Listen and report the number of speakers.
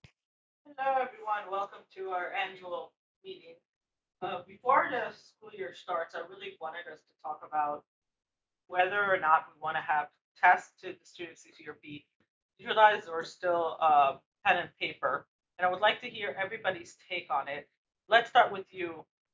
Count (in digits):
1